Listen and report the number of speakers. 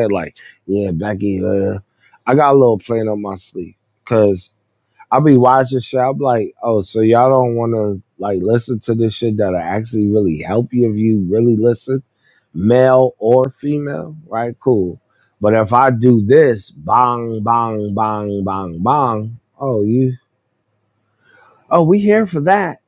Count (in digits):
1